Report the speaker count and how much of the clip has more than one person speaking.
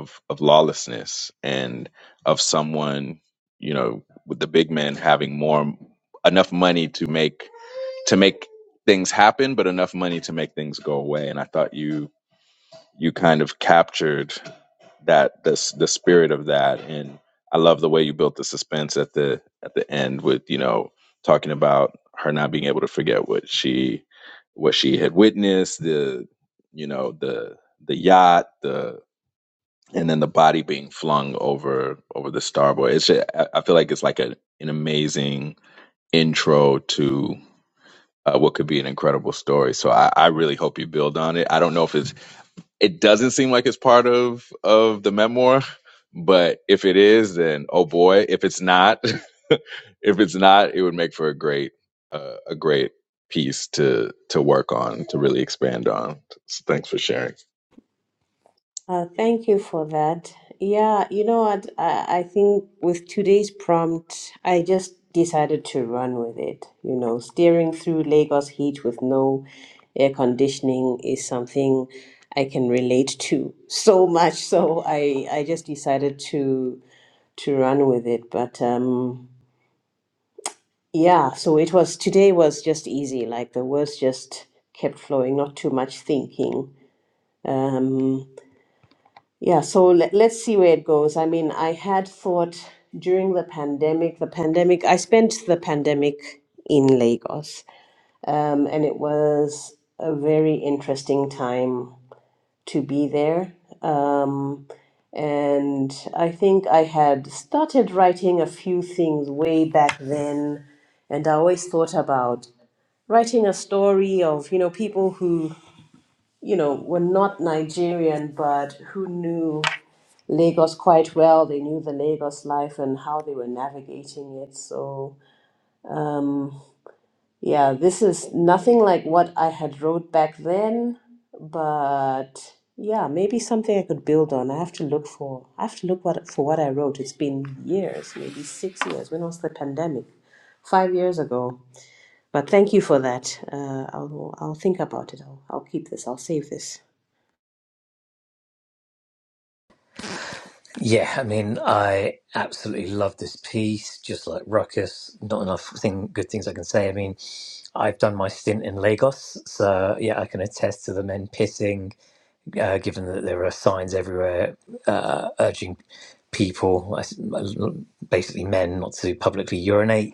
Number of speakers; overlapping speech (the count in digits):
3, no overlap